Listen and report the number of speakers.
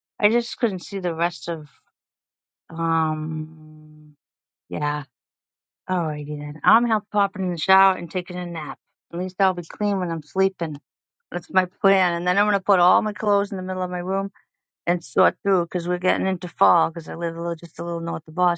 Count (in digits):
1